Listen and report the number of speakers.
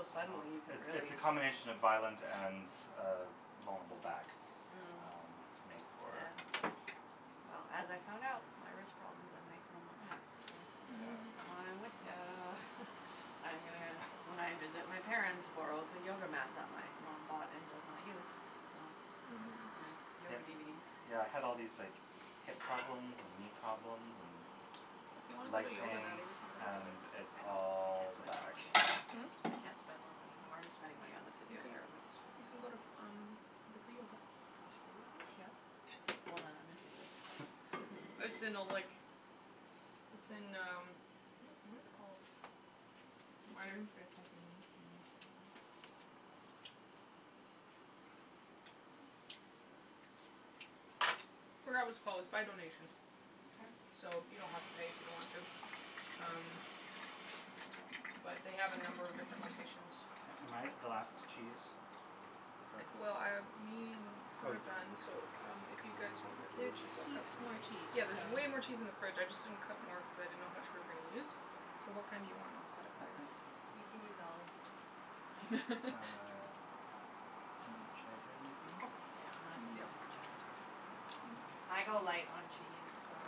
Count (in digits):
4